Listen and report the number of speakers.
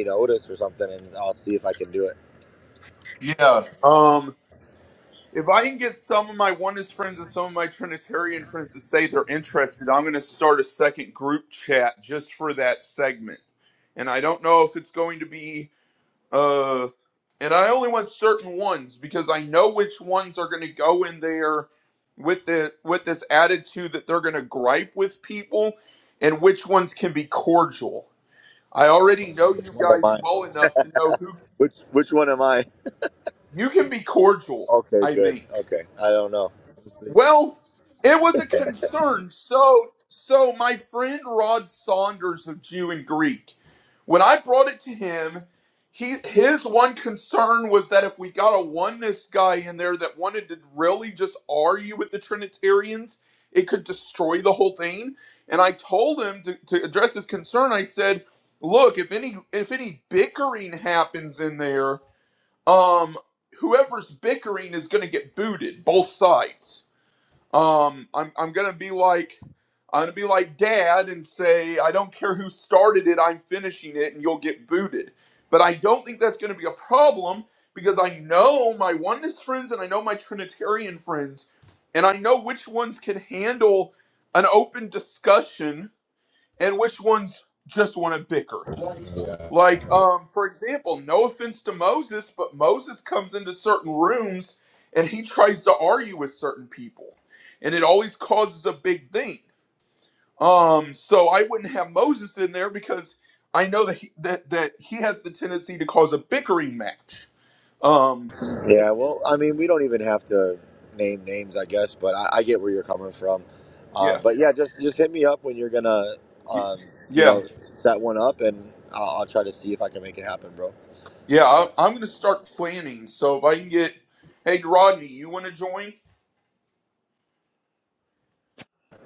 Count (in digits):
2